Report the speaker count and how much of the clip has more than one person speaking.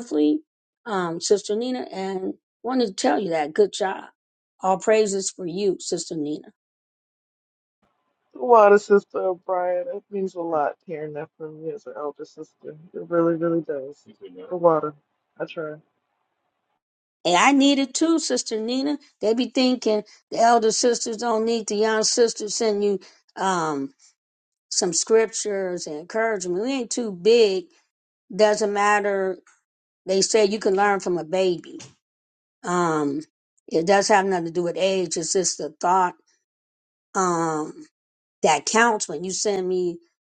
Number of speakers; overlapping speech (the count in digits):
2, no overlap